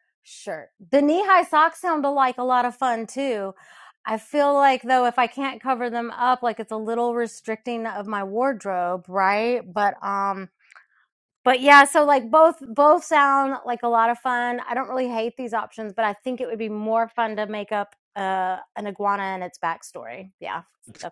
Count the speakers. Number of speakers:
1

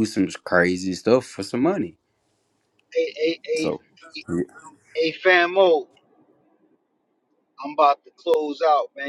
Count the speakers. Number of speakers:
2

